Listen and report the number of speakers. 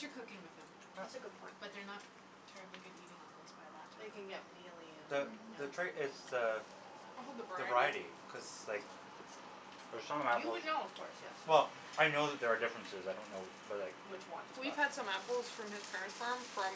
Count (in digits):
4